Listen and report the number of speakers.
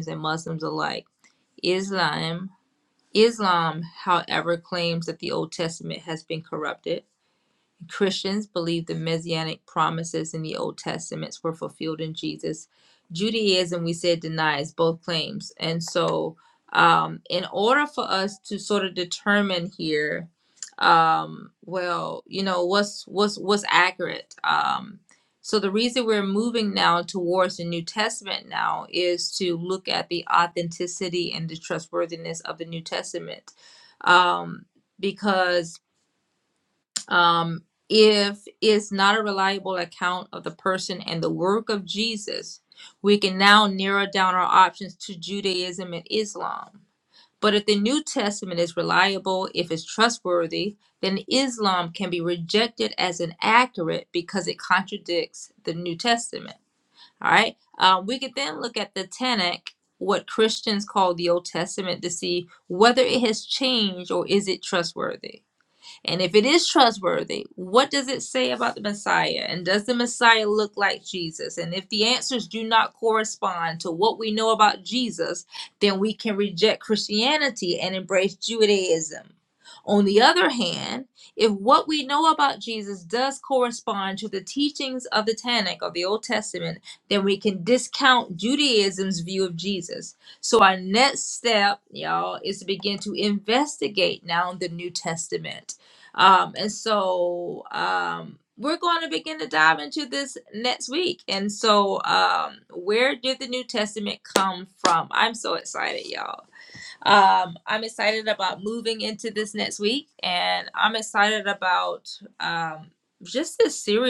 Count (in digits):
1